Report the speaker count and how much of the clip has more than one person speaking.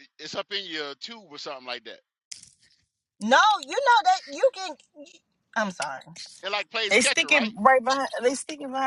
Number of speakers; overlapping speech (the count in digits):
3, about 7%